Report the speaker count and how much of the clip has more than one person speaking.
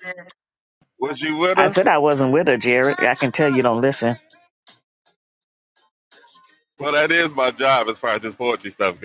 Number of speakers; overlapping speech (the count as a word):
two, about 2%